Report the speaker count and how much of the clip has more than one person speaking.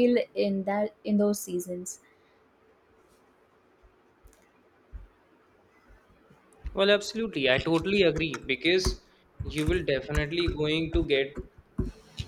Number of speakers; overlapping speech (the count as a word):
two, no overlap